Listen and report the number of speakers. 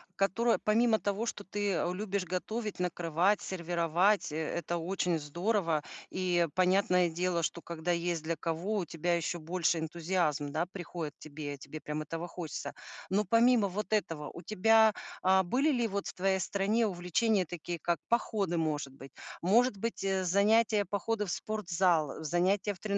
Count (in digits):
1